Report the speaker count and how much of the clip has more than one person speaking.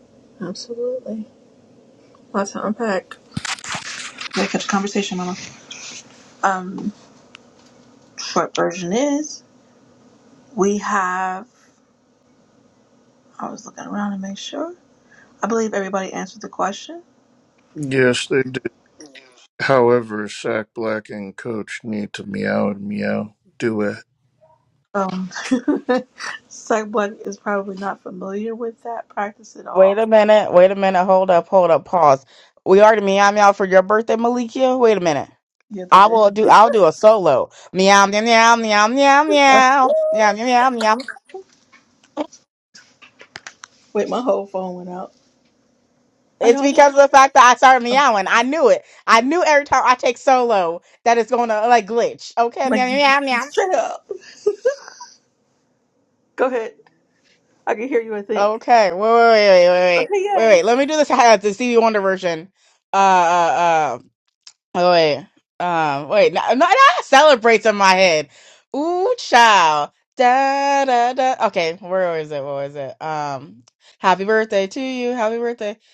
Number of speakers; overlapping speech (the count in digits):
3, about 3%